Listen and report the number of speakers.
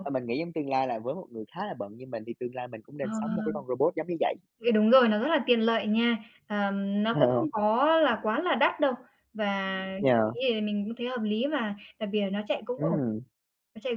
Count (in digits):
2